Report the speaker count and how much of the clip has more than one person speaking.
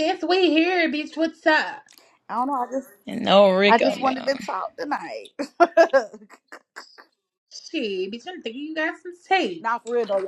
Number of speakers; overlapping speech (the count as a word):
three, about 4%